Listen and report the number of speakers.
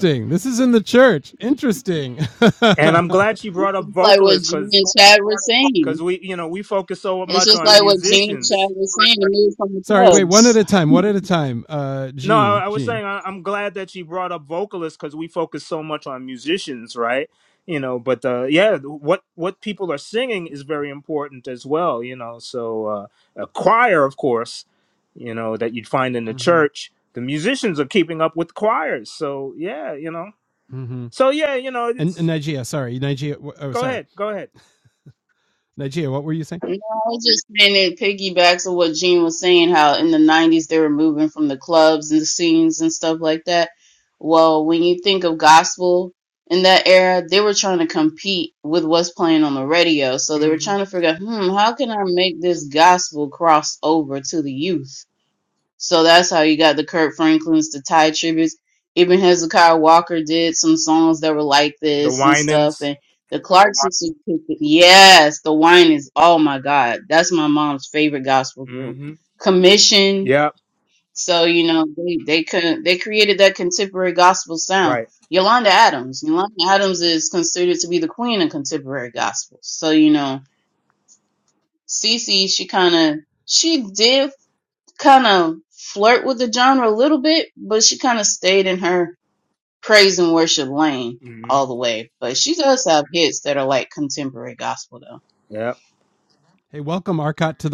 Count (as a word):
three